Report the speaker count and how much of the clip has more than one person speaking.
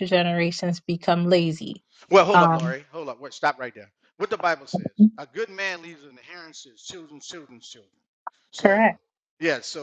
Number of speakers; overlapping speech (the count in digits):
2, about 7%